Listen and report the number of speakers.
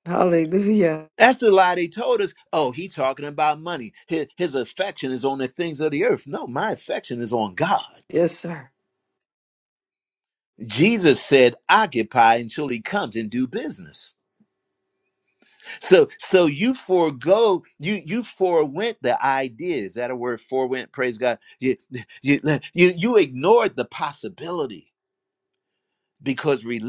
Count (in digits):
2